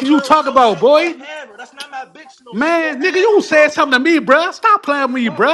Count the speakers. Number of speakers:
2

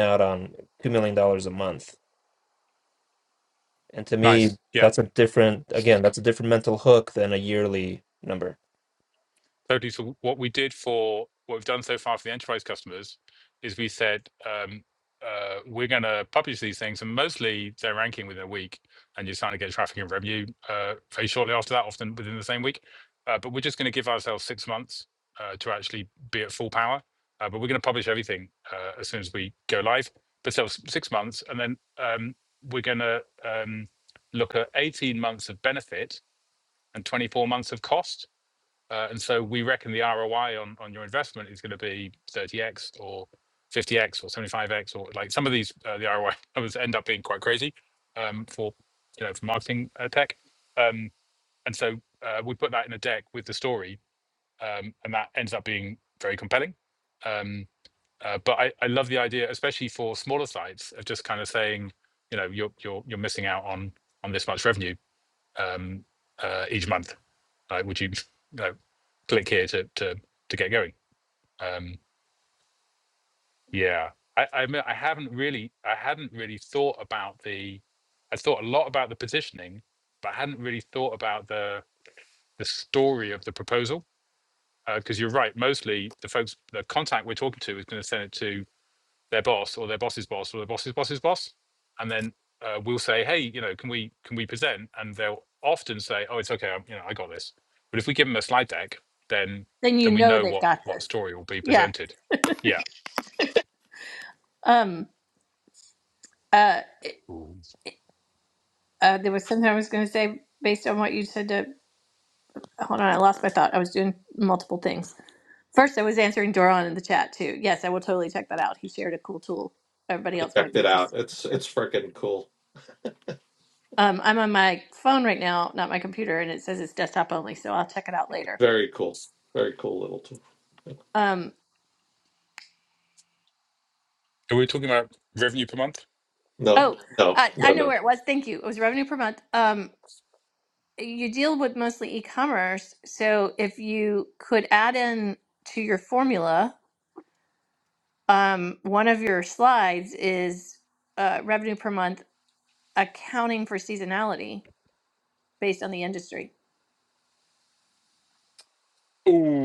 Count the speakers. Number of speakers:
4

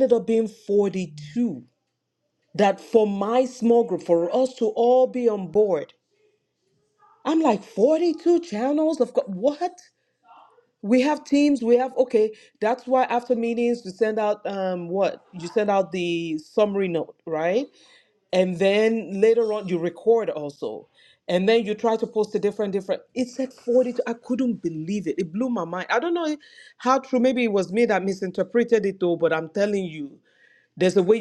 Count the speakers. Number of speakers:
1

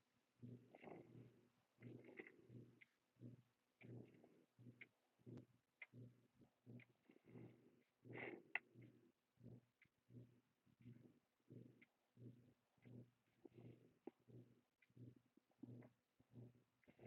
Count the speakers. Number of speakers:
0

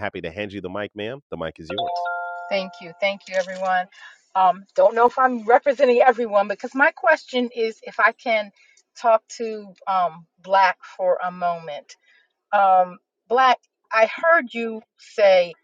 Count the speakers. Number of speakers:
2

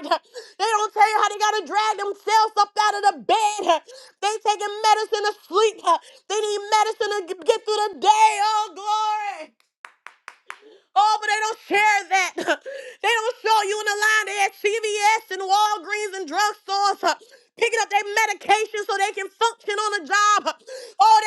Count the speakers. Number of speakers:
1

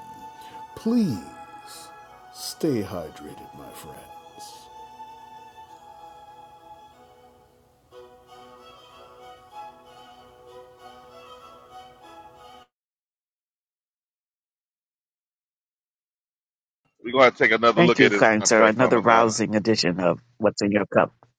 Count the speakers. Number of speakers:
3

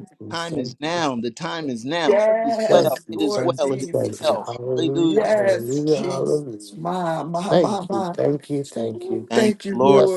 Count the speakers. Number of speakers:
3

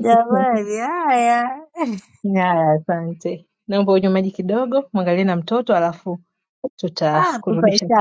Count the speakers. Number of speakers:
2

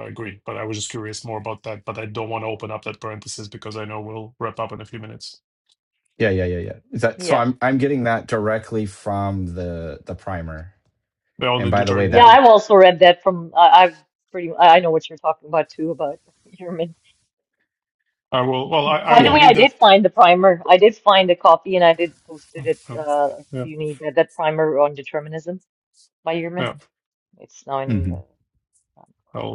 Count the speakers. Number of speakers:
3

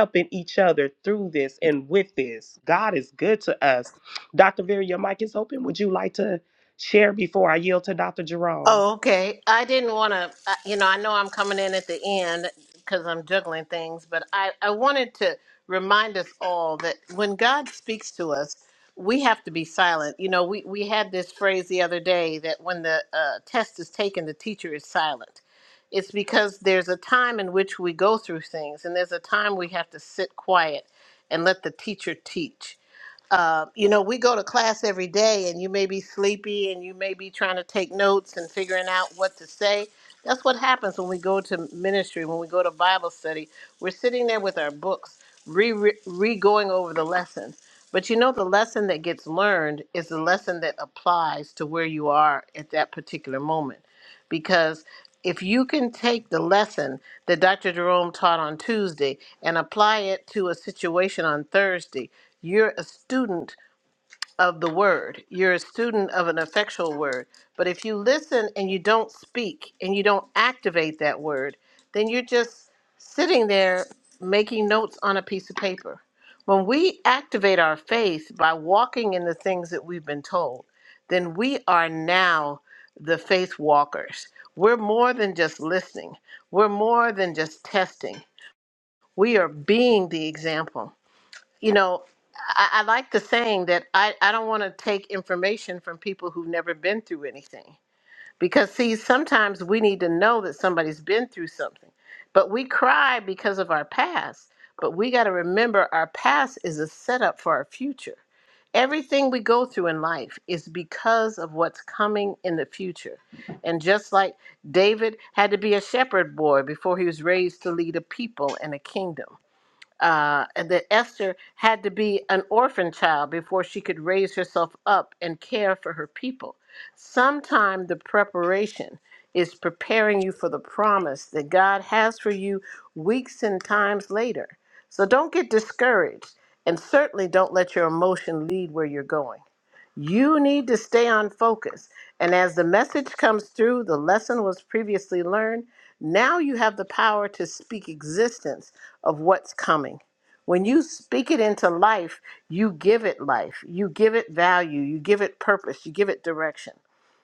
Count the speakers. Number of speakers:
2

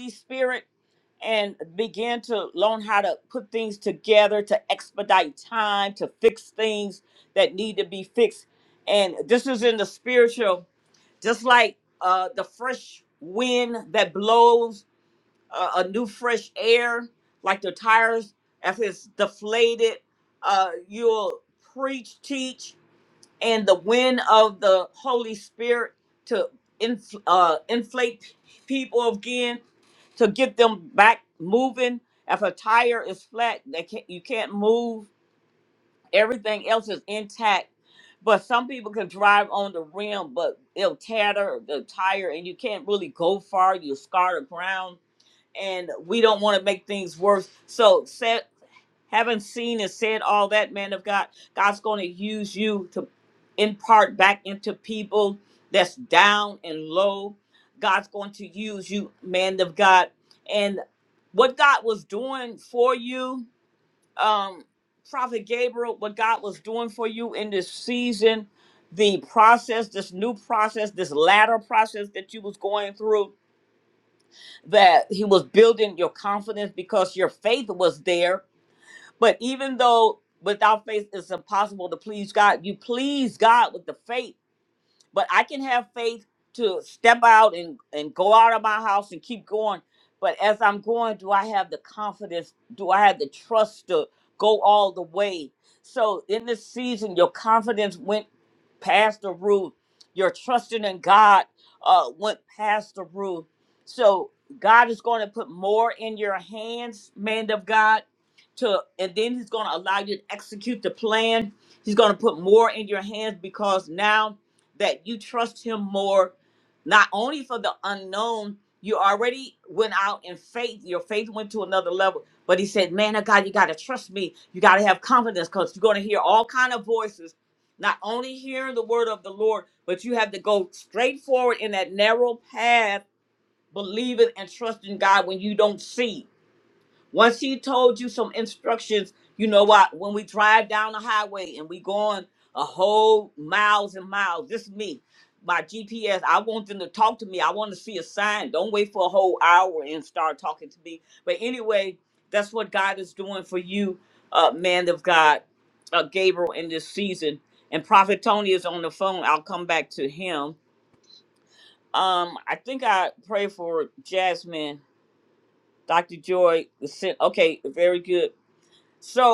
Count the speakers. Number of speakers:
1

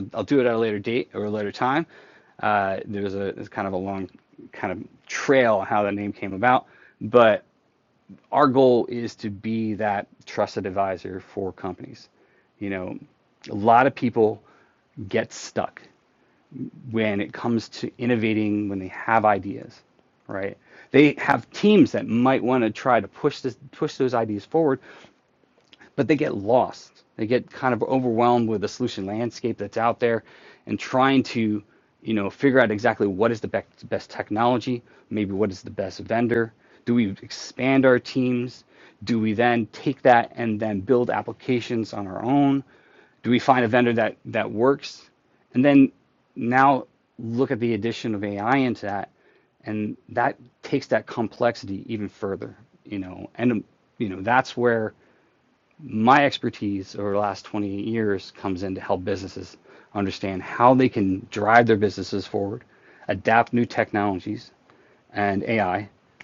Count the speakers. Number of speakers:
1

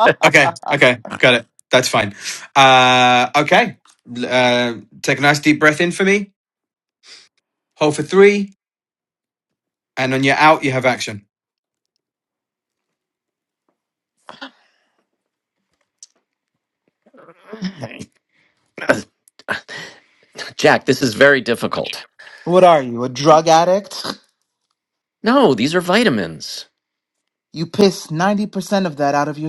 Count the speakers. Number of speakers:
3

